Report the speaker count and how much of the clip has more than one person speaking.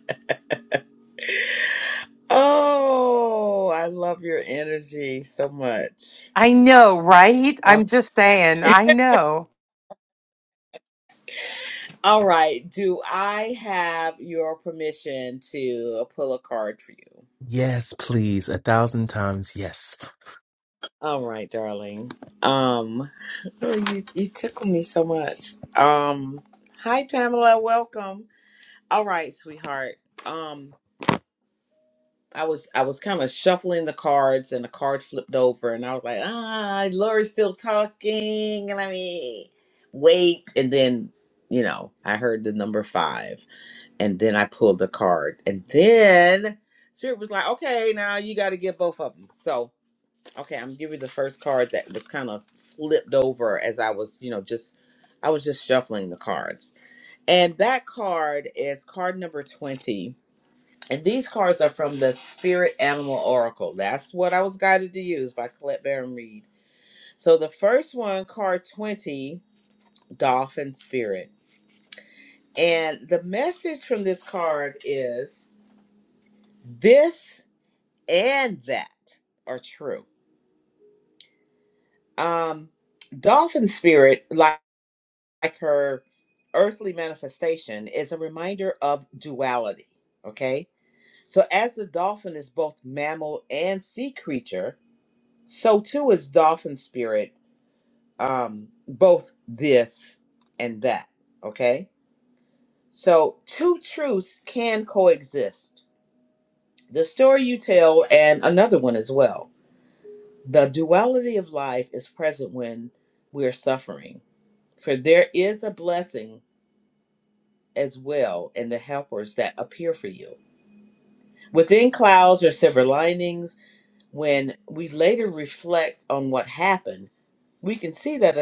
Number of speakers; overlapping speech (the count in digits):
3, no overlap